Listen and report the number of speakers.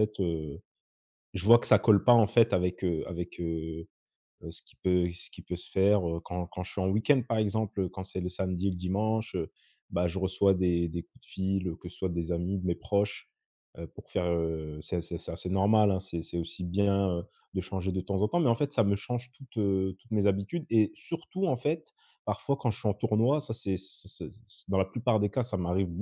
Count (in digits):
1